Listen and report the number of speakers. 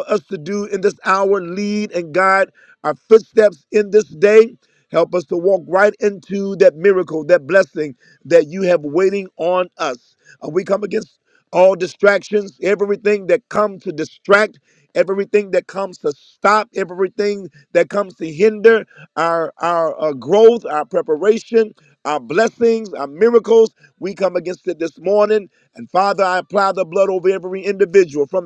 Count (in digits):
1